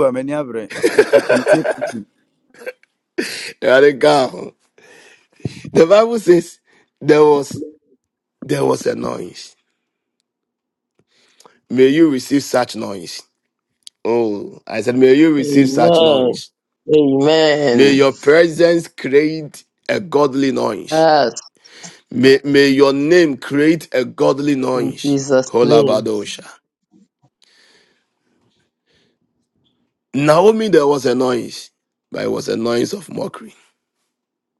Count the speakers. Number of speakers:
three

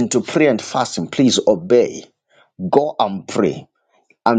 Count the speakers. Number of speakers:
one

